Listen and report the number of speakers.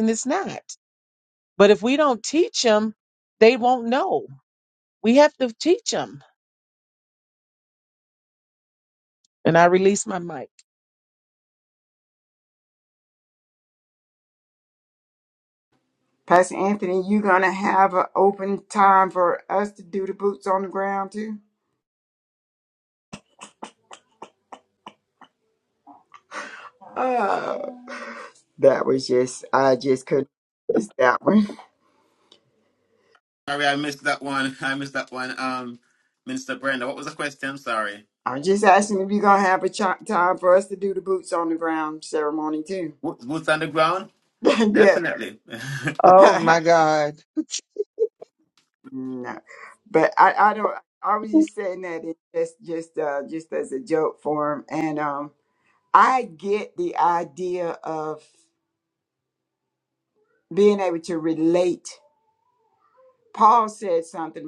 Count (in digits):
4